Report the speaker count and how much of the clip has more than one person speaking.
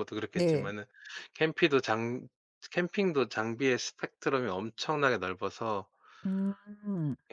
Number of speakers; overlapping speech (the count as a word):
two, about 5%